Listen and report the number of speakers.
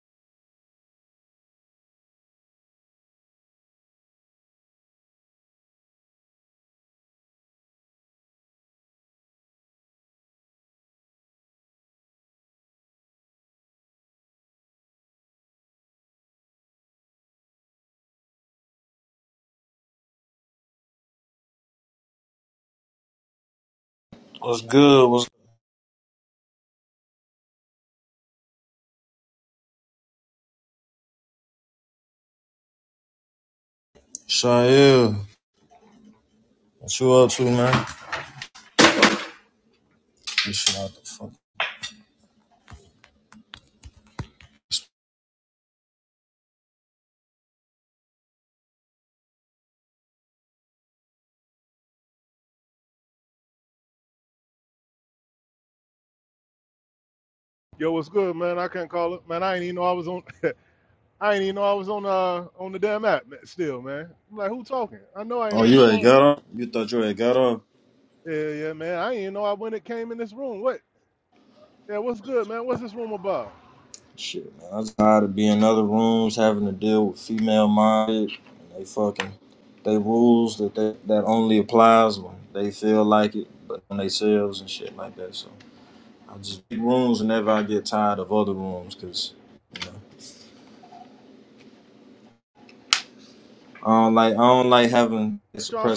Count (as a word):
two